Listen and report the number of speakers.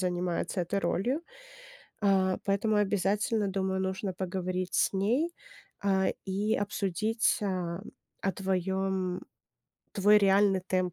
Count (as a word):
one